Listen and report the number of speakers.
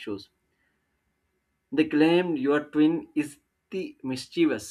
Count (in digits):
1